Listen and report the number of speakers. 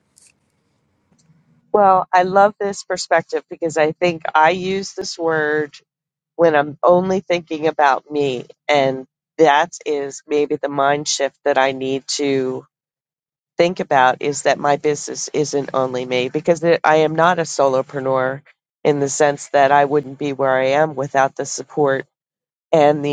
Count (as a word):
one